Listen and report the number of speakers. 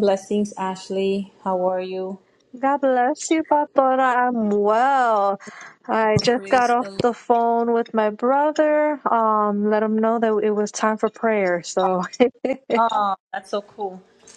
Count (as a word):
two